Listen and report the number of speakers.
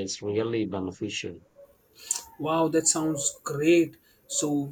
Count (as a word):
two